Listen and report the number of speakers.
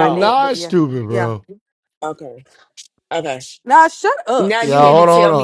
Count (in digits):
3